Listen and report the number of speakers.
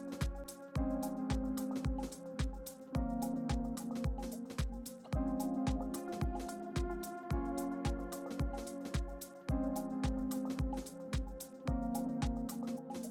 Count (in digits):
0